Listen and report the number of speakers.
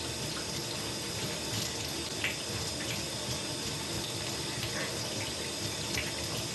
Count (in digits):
0